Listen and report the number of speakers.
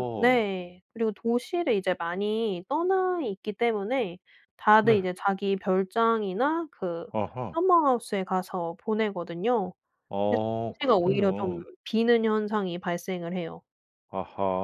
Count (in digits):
2